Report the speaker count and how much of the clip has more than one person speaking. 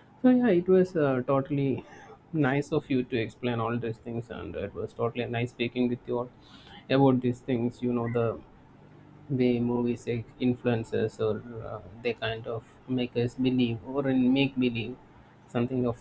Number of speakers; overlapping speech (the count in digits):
1, no overlap